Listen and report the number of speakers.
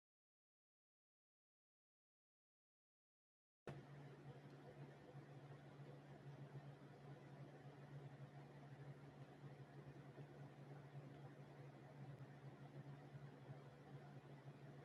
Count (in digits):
0